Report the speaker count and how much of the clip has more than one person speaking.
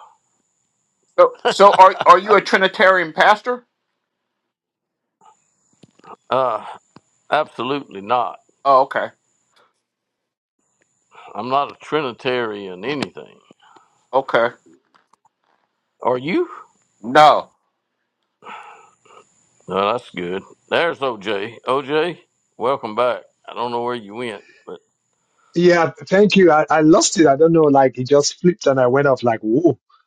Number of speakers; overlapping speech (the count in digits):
3, no overlap